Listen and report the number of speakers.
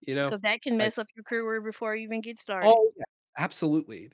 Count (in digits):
2